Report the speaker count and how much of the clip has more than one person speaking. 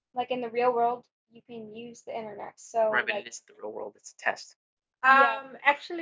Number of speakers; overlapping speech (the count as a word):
three, about 12%